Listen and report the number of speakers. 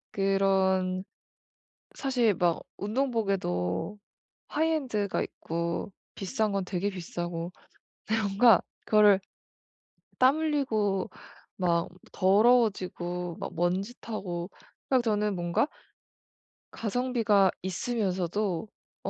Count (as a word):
one